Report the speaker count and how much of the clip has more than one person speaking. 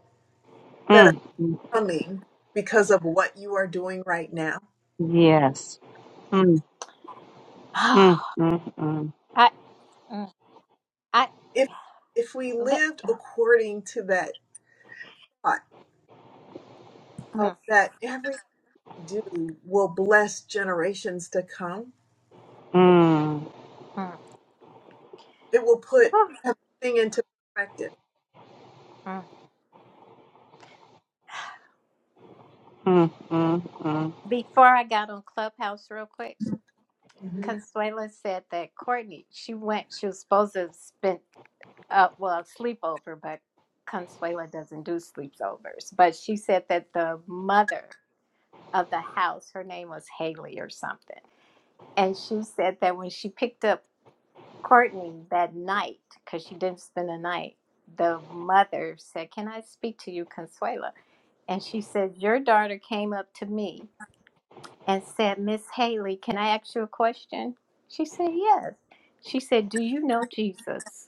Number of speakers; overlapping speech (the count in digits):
3, about 1%